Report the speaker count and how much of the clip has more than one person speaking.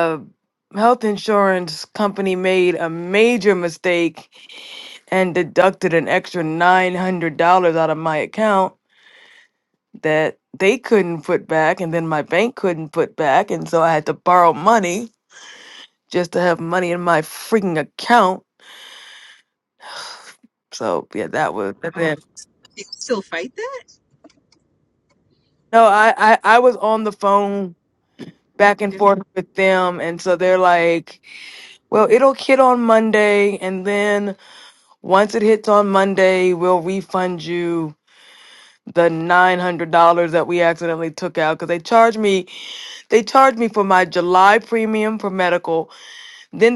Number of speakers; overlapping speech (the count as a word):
two, about 1%